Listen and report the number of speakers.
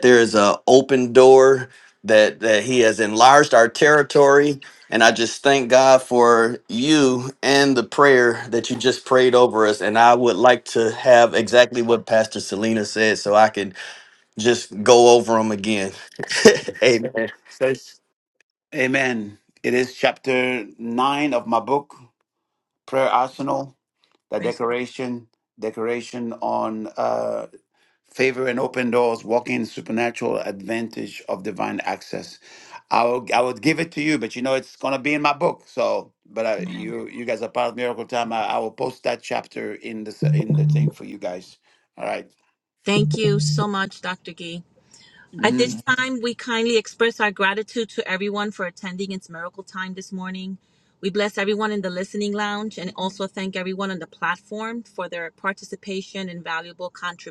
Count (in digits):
3